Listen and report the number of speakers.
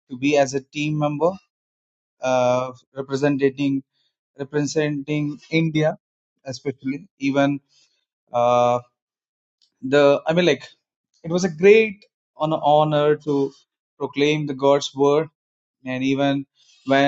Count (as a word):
one